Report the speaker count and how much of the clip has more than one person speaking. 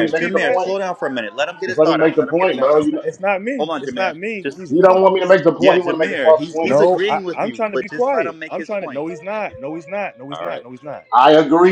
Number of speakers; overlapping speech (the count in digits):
3, about 62%